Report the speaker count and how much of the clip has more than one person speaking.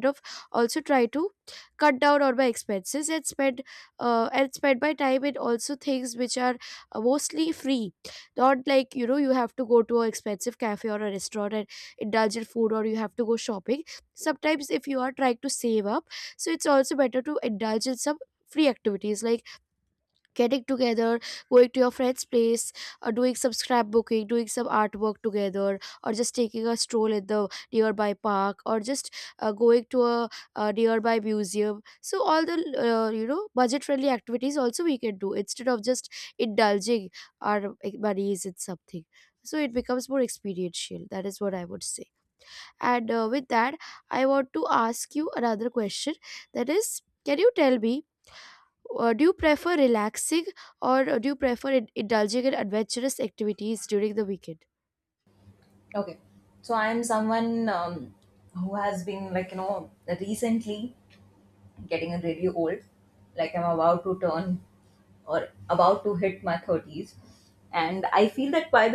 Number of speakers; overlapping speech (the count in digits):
2, no overlap